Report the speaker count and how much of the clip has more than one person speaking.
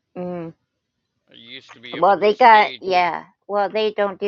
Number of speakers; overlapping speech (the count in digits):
2, about 20%